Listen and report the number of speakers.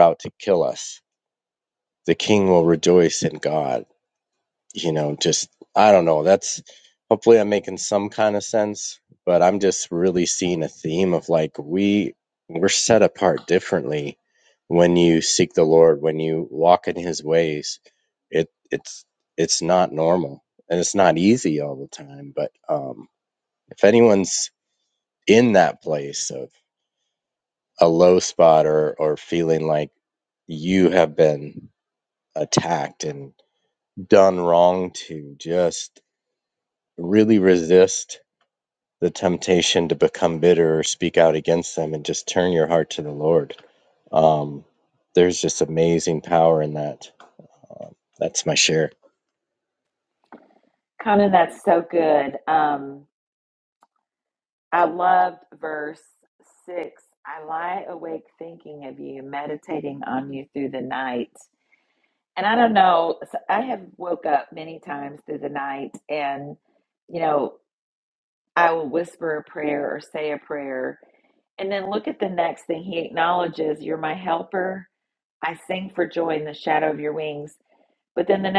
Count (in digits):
2